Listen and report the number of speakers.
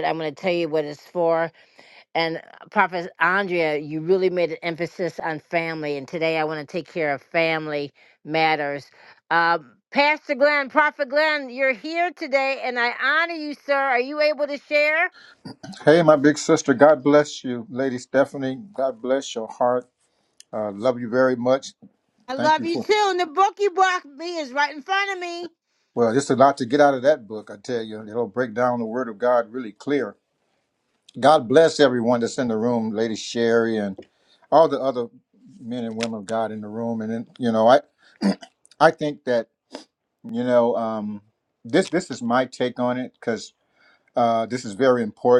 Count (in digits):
2